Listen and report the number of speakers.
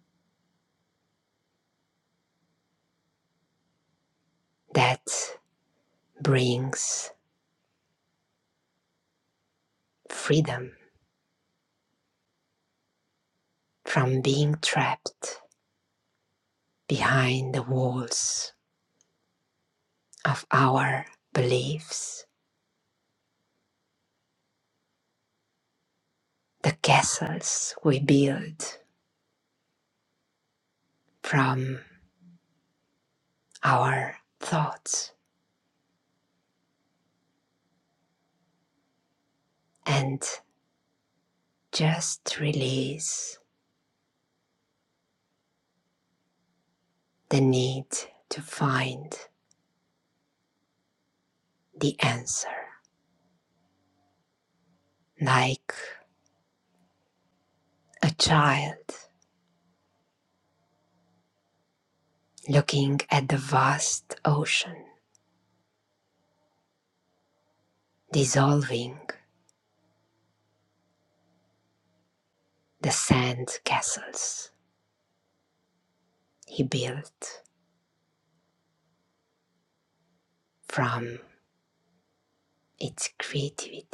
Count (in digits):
1